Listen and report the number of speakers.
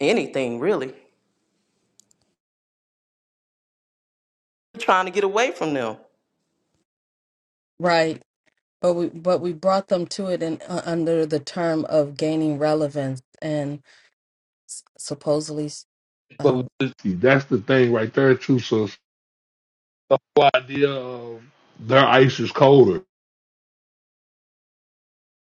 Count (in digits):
3